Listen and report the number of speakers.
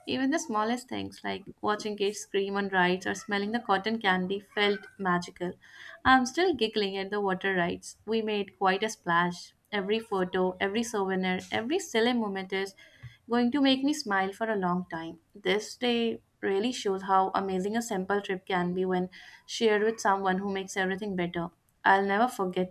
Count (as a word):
one